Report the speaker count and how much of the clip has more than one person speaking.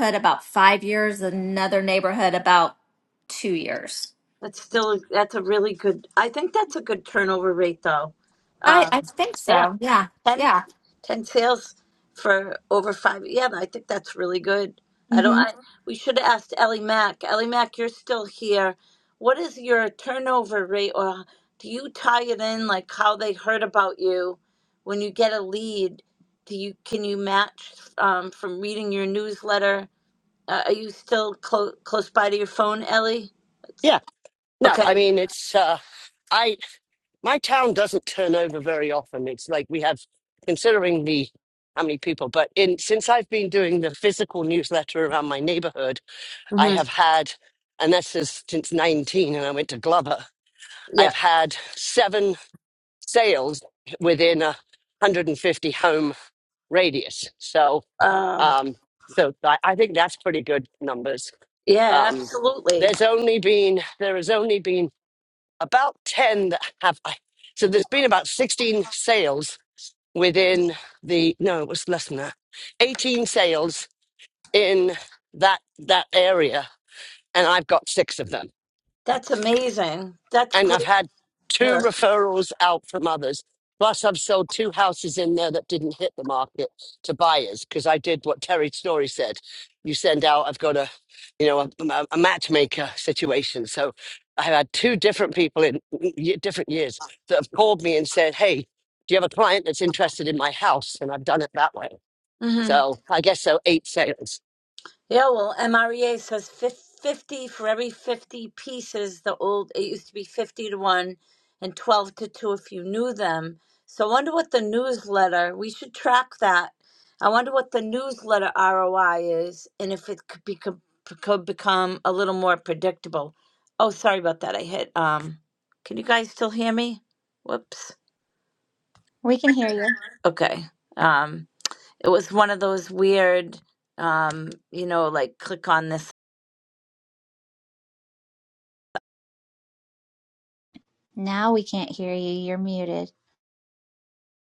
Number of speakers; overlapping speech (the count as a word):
four, about 2%